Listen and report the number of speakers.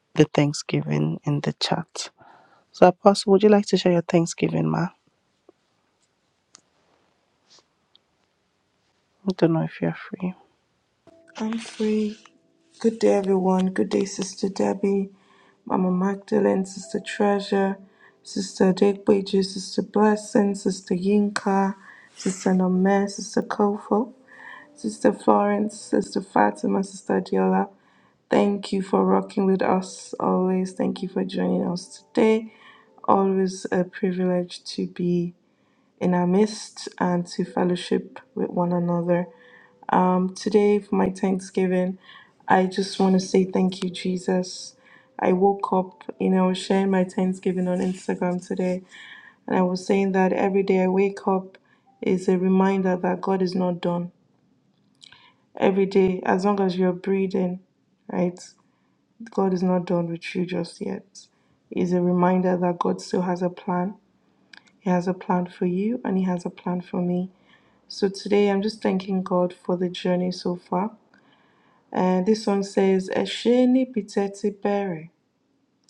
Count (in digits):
2